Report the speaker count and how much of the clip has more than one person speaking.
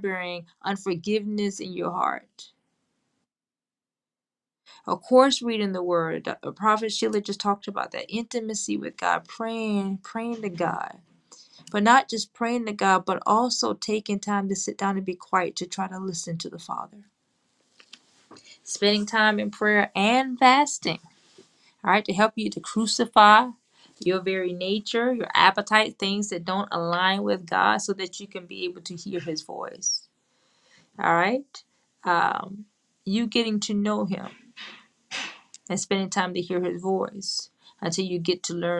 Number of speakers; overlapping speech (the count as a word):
one, no overlap